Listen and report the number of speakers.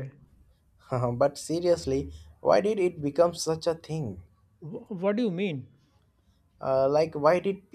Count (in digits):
2